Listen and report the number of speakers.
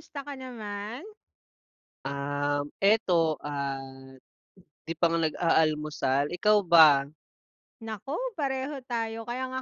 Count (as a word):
two